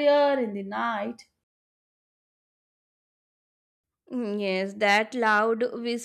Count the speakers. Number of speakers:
2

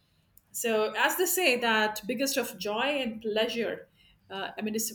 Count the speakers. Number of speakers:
1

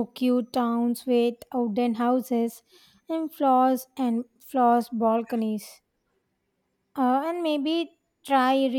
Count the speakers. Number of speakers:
1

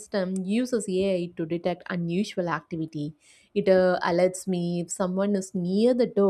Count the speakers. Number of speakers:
1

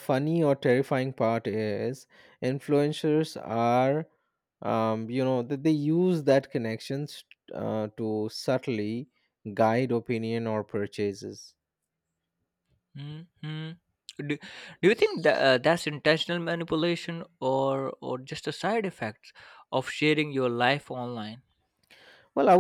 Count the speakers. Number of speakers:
2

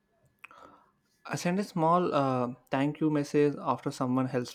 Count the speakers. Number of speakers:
1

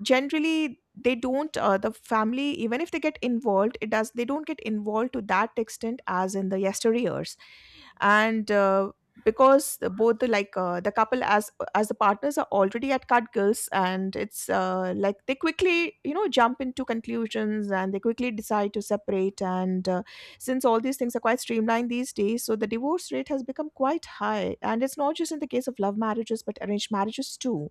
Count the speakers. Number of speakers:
1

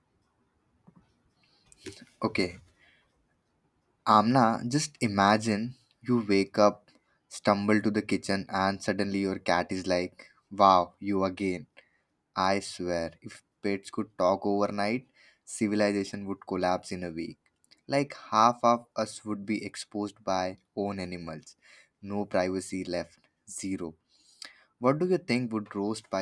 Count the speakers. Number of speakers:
1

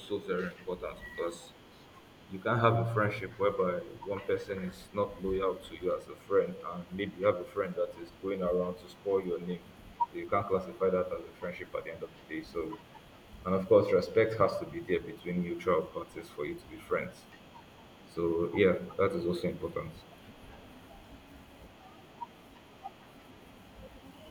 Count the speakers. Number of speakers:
1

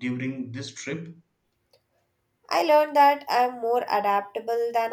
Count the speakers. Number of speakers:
2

